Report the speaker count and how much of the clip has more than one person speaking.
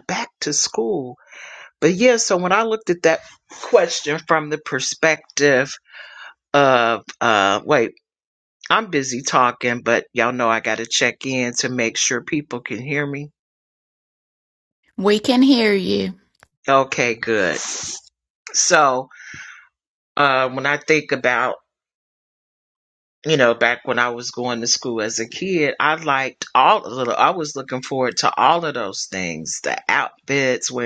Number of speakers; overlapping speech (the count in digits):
2, no overlap